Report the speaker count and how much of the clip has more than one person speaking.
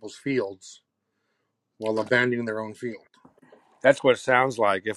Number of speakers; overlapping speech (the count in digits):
2, no overlap